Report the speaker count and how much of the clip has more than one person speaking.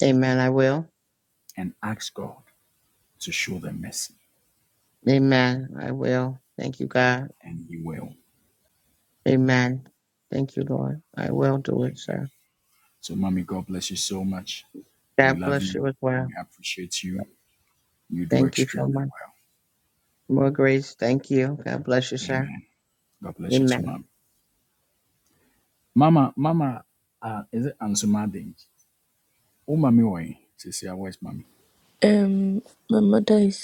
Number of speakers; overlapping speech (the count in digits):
3, about 6%